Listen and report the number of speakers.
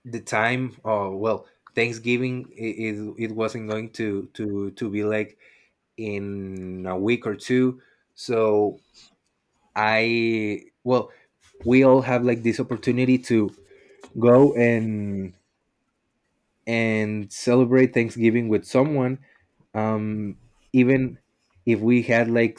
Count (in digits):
1